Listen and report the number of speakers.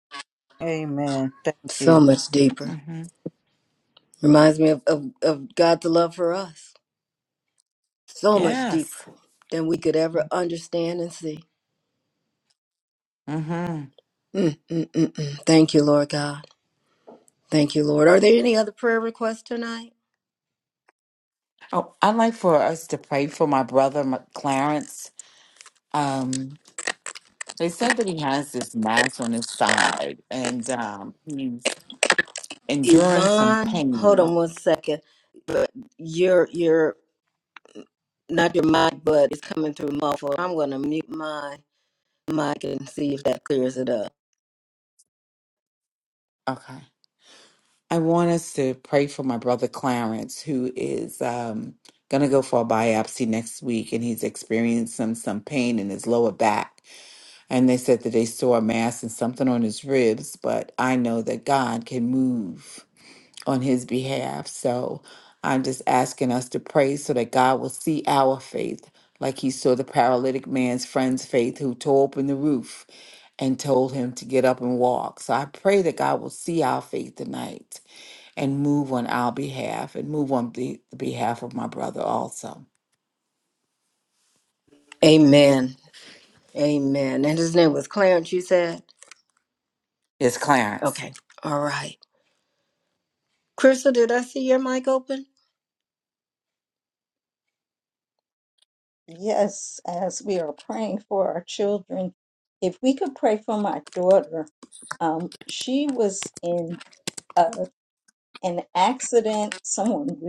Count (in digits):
4